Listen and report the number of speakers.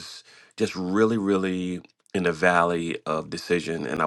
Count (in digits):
1